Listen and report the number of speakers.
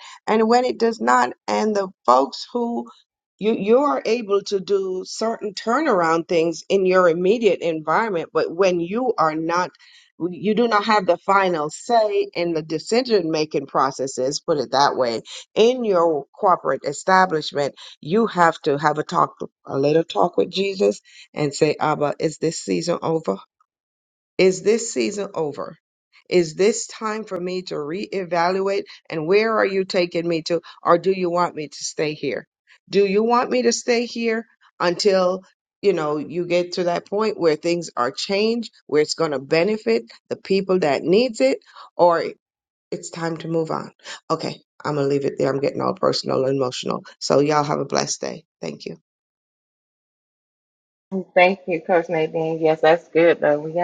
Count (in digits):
2